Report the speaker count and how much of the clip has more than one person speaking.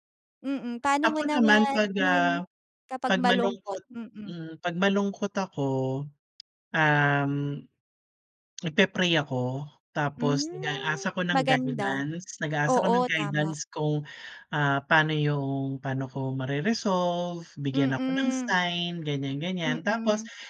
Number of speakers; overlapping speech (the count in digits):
2, about 30%